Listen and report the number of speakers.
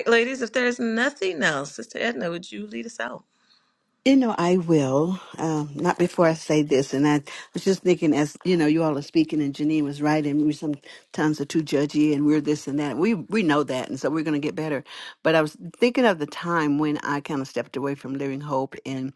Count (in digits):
2